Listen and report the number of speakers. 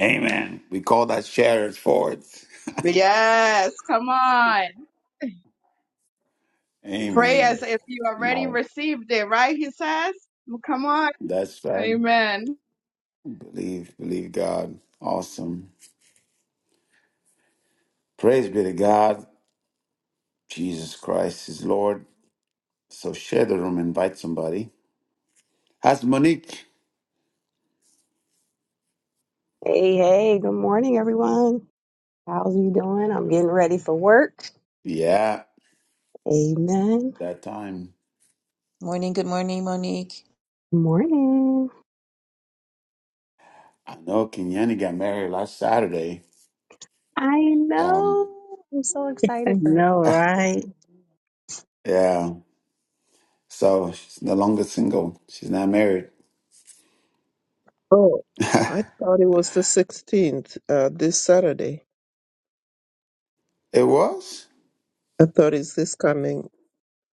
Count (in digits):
6